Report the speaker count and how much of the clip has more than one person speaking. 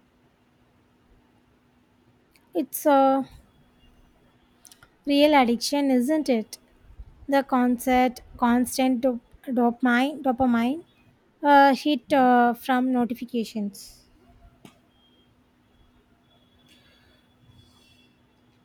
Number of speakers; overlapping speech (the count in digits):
1, no overlap